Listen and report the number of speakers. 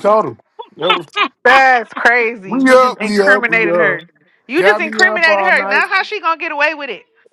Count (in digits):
2